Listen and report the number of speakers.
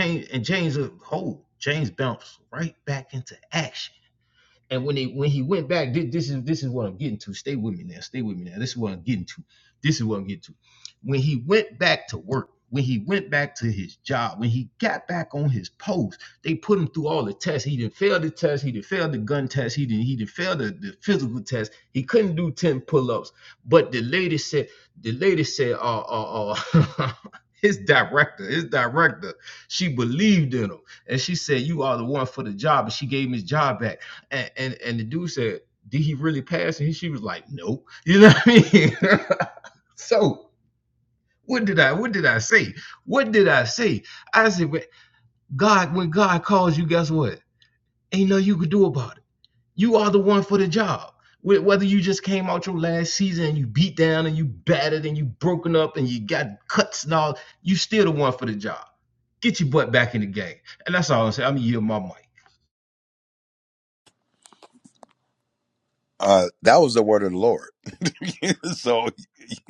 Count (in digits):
2